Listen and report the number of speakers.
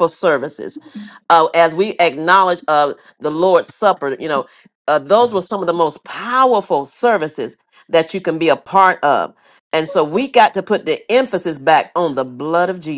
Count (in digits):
1